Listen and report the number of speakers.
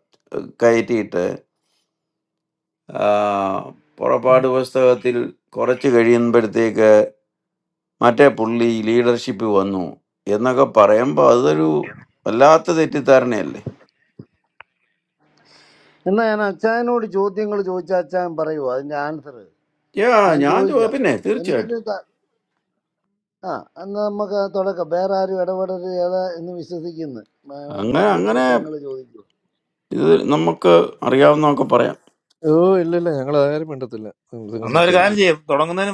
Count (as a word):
four